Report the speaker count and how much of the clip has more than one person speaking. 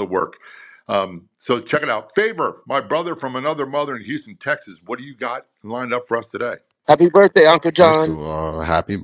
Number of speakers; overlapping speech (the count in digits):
3, about 4%